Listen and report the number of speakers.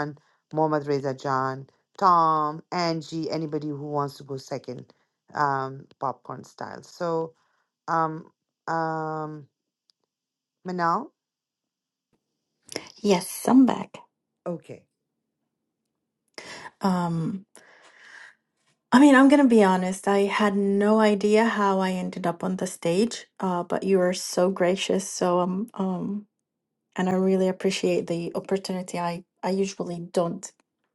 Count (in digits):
2